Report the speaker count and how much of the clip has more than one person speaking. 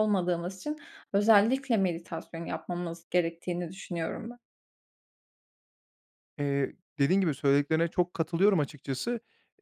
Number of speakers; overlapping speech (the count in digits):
2, no overlap